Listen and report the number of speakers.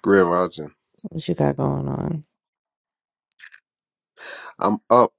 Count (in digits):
2